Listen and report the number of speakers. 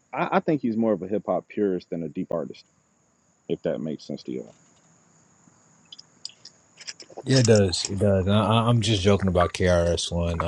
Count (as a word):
two